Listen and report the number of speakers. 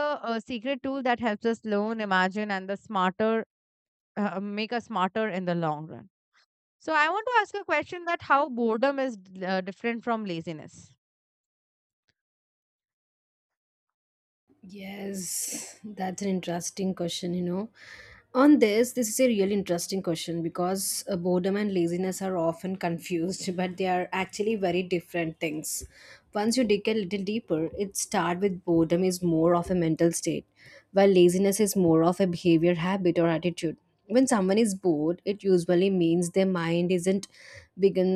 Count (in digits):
2